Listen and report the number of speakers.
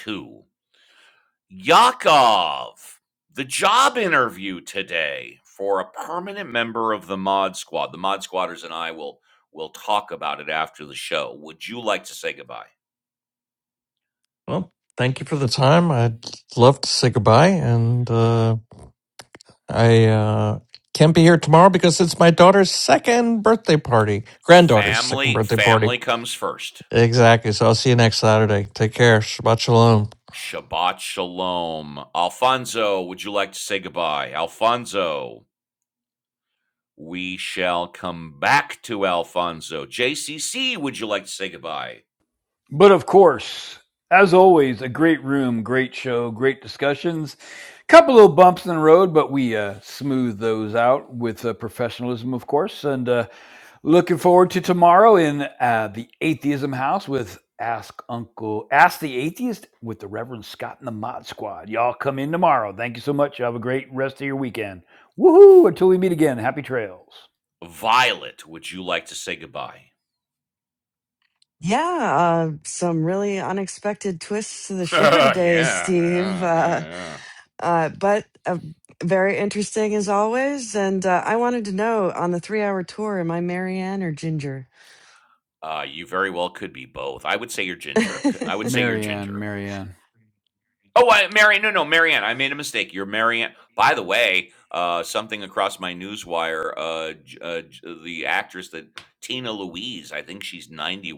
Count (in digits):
4